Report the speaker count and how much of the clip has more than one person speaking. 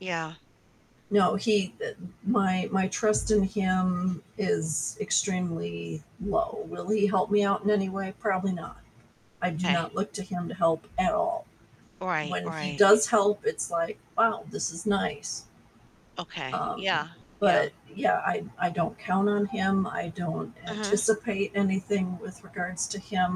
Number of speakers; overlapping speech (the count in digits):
2, about 9%